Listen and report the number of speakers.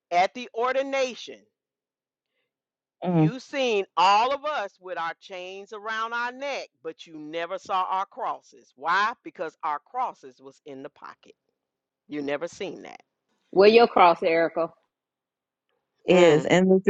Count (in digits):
3